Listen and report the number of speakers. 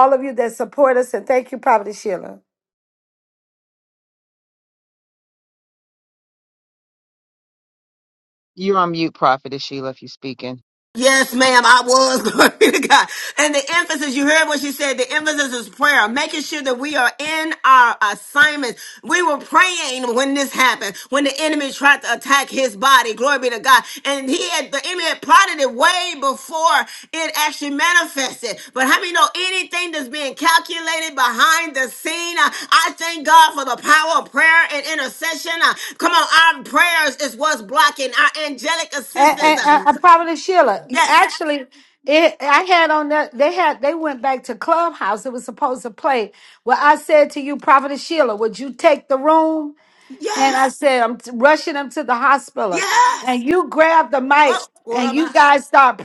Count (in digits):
3